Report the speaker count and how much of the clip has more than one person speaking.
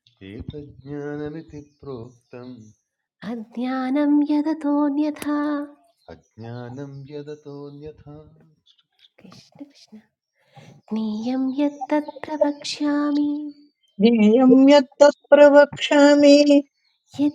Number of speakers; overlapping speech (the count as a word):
three, no overlap